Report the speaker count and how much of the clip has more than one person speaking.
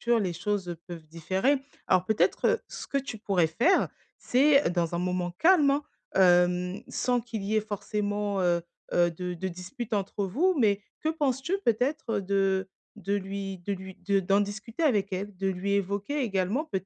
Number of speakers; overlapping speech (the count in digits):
1, no overlap